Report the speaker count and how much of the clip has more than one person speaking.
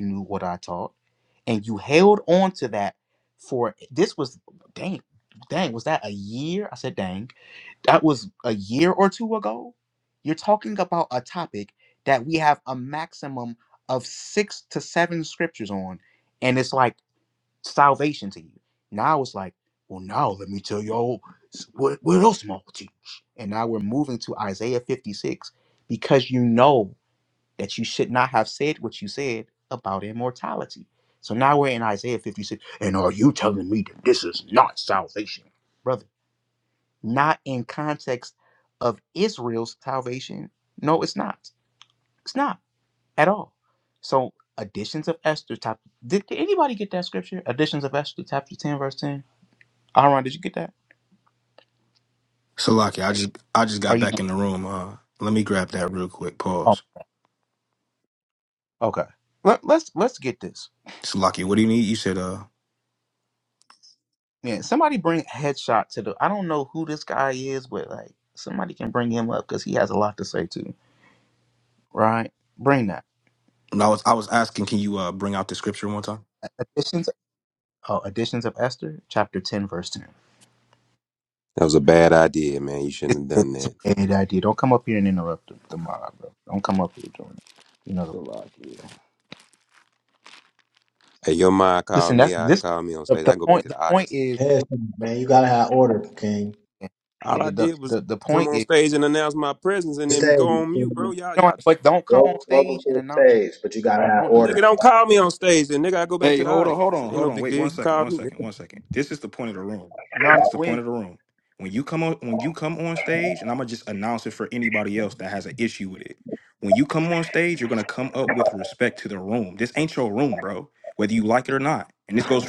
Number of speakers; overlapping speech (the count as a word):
four, about 7%